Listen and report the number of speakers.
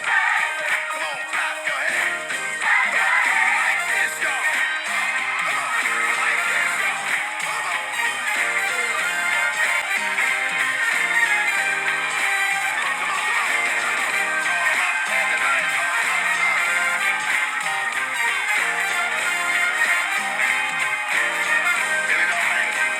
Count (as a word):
zero